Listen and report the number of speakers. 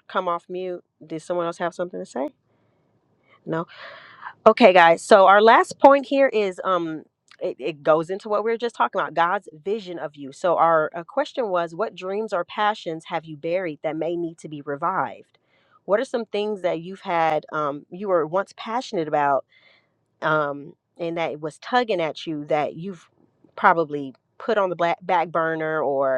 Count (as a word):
one